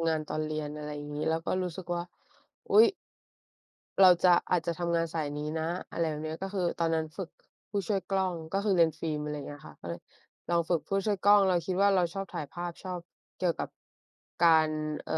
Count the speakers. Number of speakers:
1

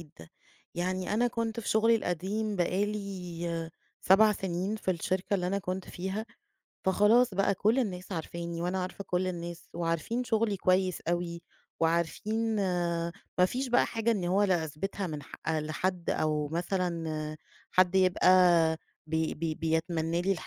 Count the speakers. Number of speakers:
1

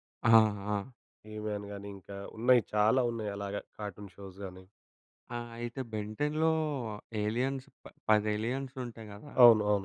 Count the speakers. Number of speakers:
2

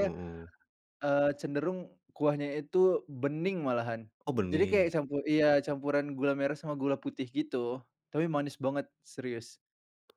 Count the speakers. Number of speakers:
2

